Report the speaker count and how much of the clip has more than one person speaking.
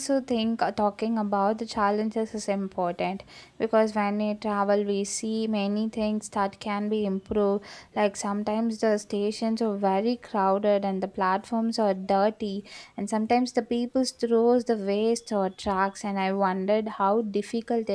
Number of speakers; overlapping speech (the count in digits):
1, no overlap